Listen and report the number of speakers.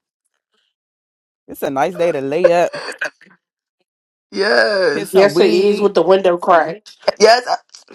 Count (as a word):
three